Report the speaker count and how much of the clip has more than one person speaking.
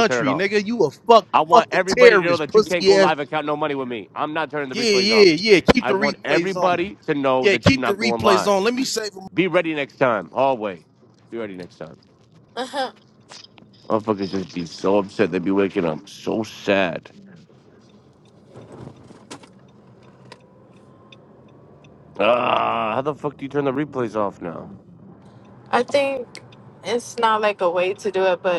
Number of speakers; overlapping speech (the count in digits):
3, about 17%